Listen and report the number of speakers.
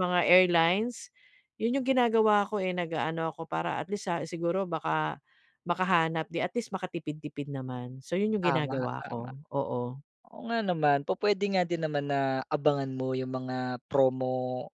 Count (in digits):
2